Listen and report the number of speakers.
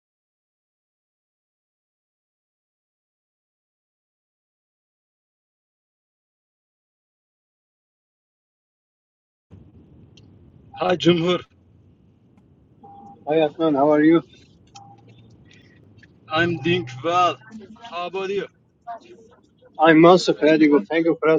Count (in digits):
2